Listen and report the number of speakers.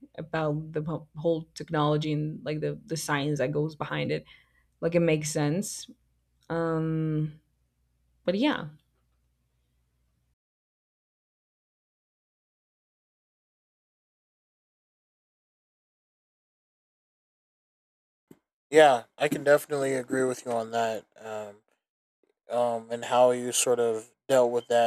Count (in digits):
2